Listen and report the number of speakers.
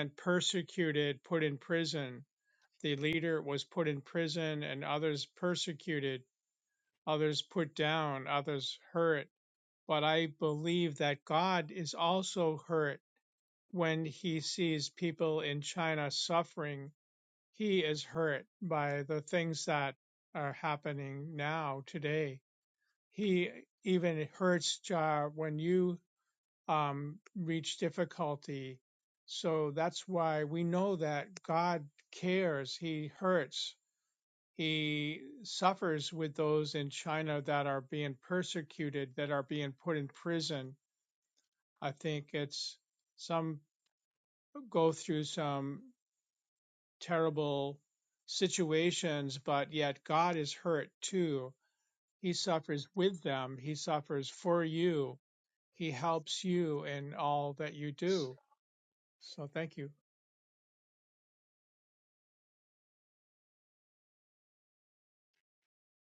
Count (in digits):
1